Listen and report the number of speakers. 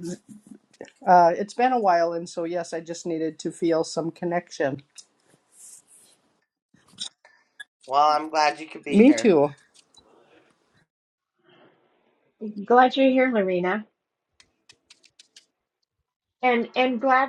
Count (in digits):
3